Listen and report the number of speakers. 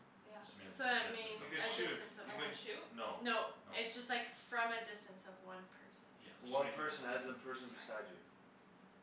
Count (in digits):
4